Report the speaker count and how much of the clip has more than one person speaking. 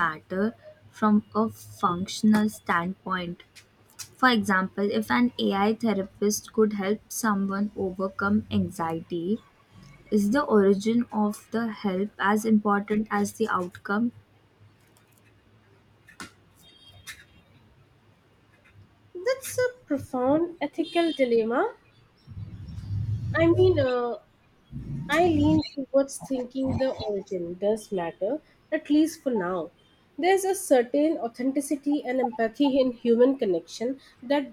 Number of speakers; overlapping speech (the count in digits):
2, no overlap